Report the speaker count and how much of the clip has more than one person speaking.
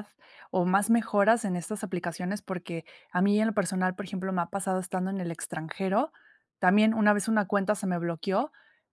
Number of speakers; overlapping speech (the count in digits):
1, no overlap